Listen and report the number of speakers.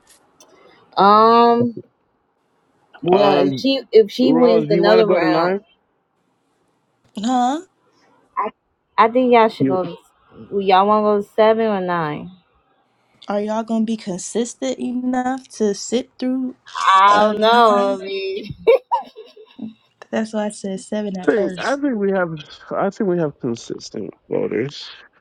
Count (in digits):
3